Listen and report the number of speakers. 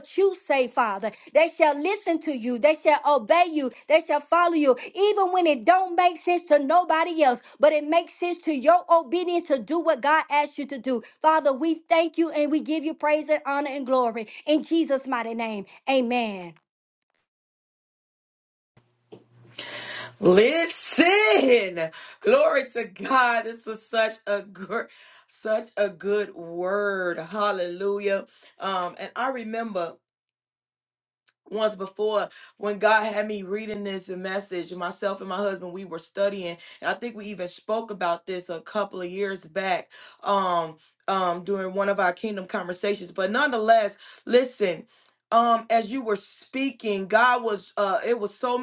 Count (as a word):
two